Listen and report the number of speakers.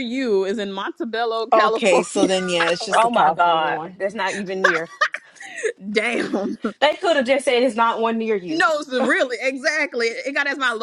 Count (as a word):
three